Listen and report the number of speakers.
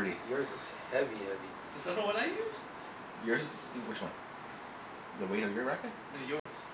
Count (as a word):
three